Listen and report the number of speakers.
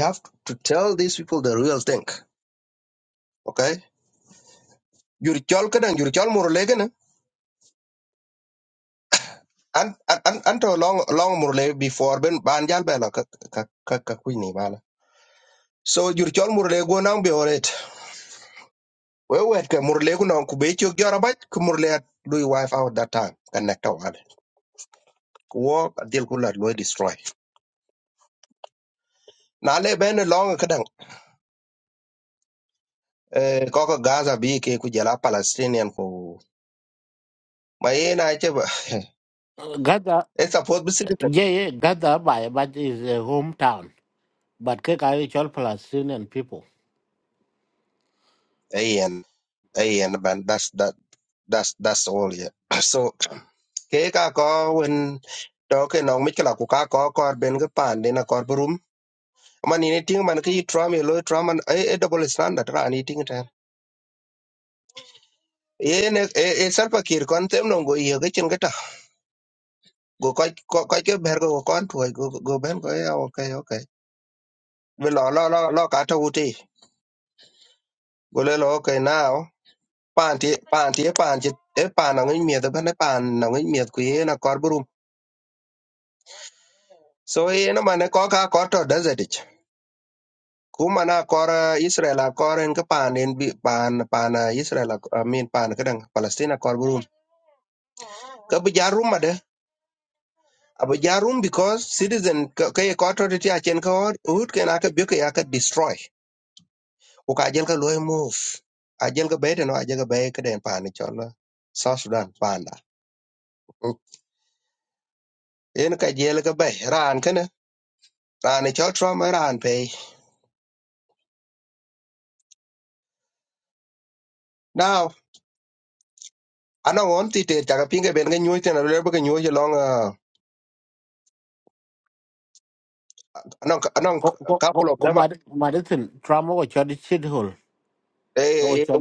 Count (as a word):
two